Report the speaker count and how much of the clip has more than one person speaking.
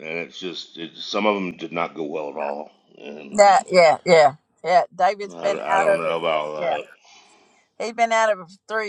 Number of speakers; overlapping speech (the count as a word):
two, about 14%